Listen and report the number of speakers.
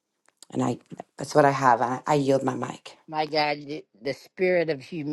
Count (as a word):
two